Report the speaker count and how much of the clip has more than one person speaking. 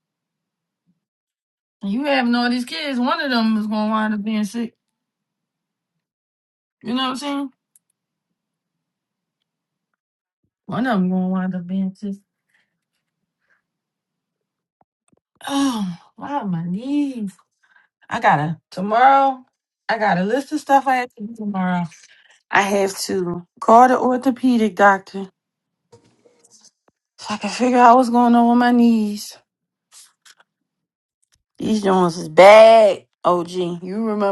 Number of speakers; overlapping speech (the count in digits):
1, no overlap